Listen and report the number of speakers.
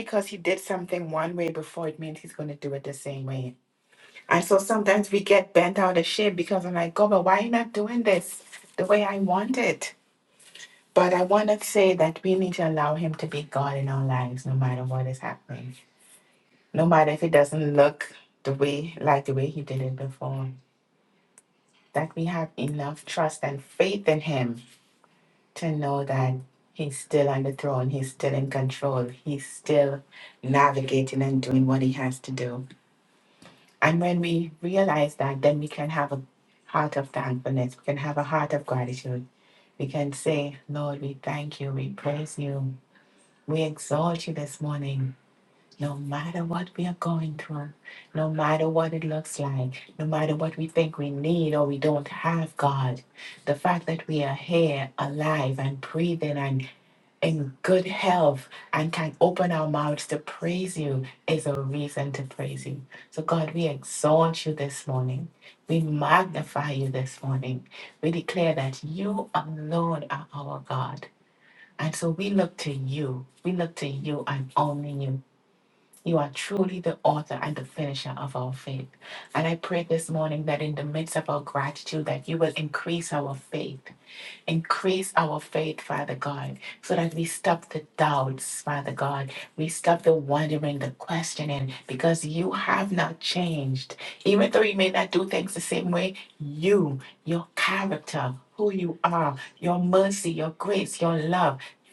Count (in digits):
1